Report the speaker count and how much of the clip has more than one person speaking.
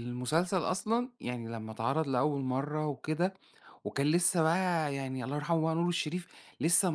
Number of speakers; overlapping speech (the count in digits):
1, no overlap